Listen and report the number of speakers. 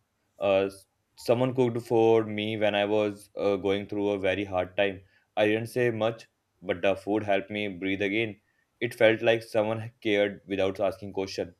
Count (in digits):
1